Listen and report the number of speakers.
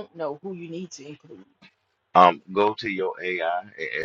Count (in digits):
2